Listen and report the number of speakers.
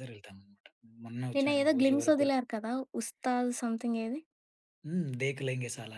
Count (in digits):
2